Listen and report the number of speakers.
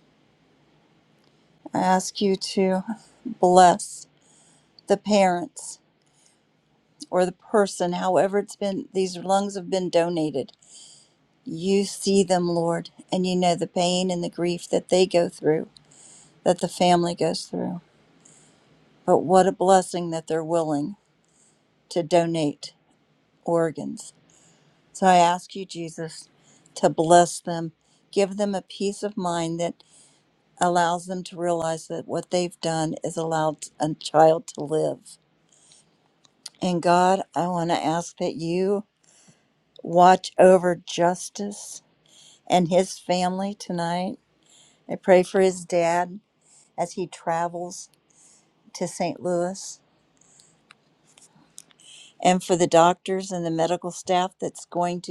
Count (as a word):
one